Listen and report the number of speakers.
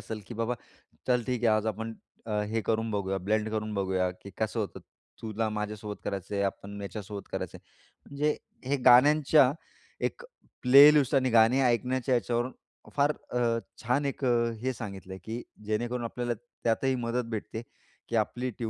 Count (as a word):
one